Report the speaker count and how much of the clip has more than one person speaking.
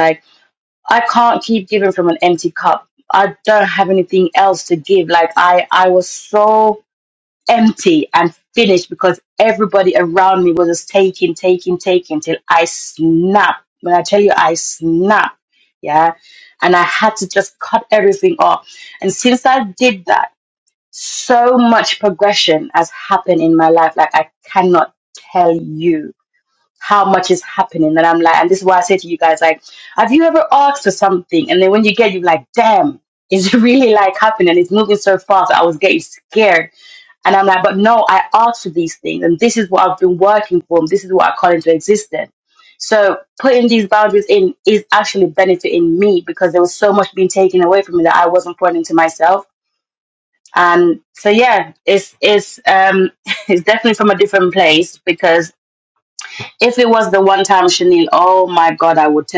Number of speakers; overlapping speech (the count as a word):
one, no overlap